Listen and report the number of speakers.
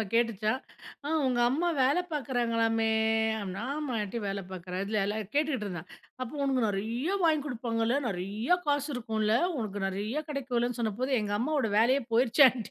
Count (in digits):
1